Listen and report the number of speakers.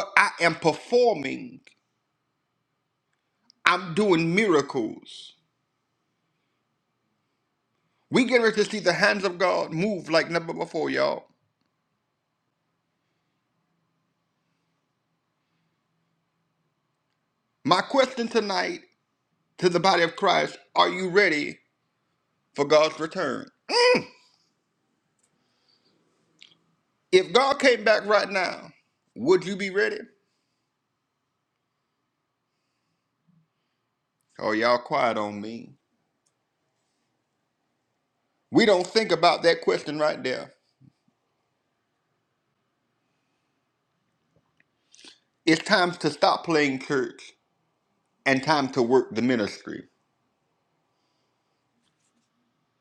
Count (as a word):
one